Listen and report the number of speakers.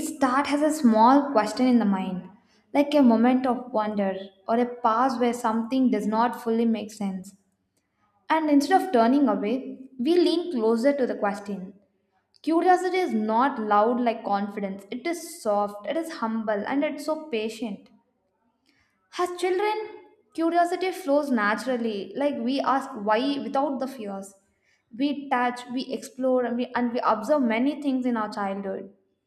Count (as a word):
one